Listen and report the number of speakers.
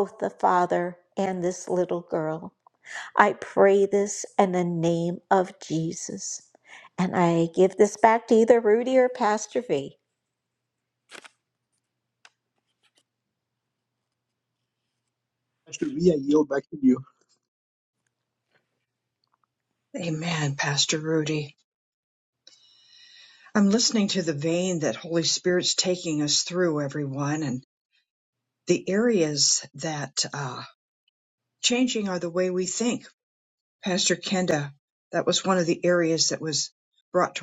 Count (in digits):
3